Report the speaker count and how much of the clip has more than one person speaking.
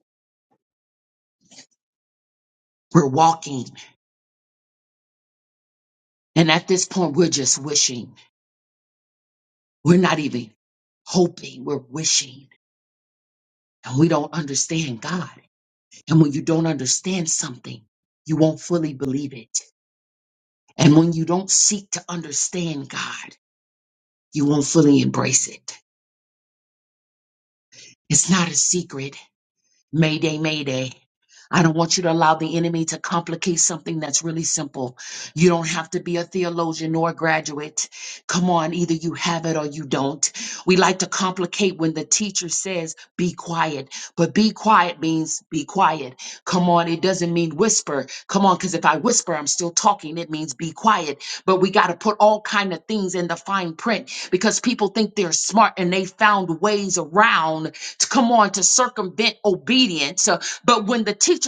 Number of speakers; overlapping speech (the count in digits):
1, no overlap